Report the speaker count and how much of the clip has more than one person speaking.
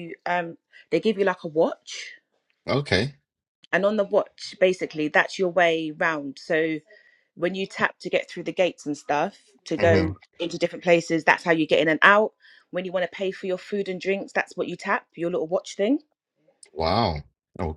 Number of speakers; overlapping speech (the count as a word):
two, about 2%